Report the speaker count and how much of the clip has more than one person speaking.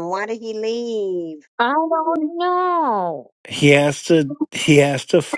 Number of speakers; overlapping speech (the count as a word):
three, no overlap